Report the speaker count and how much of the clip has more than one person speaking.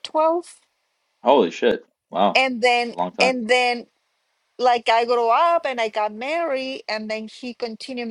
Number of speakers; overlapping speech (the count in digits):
2, about 4%